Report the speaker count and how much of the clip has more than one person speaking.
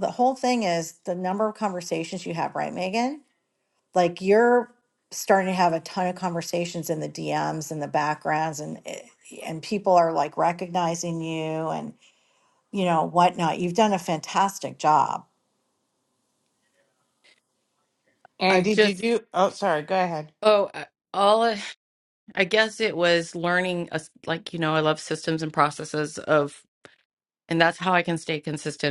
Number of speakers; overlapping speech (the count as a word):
three, about 1%